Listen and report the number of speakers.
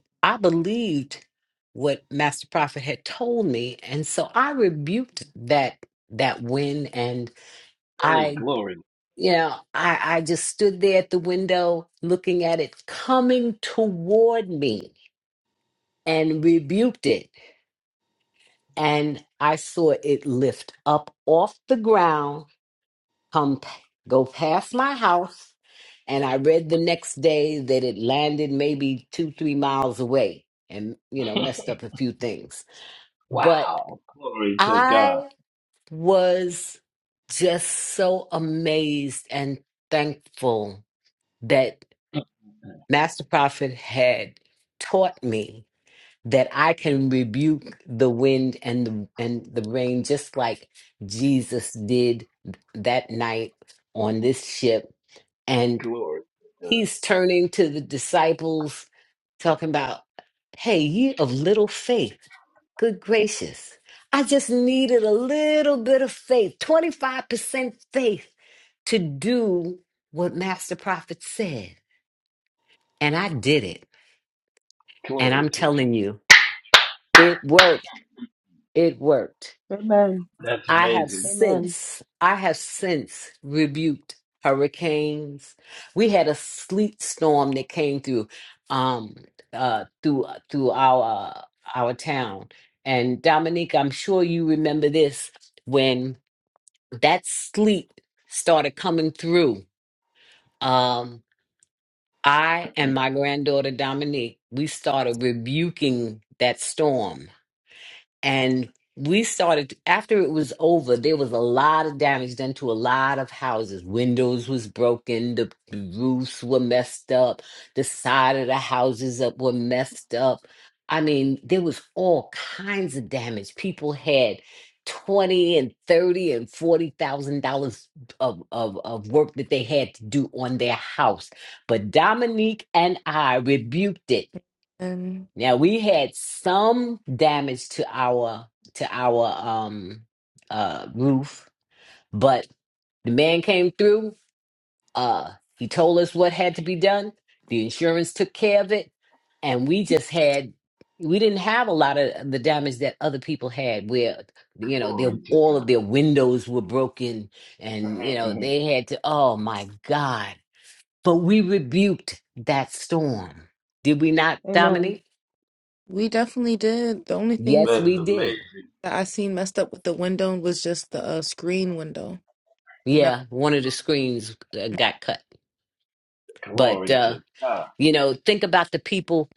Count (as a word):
four